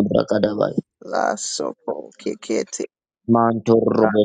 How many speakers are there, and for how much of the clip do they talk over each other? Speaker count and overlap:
two, no overlap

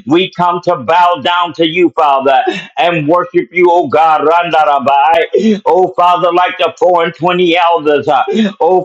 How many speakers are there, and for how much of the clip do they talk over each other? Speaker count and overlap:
one, no overlap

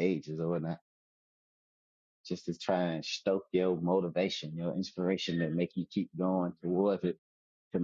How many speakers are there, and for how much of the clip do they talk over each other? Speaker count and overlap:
one, no overlap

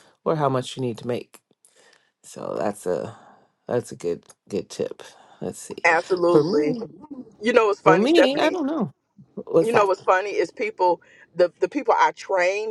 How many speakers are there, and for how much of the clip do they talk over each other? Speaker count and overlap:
two, about 13%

